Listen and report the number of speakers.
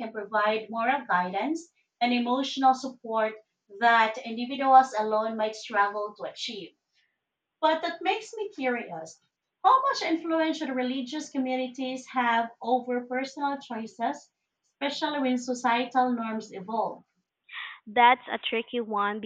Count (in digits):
2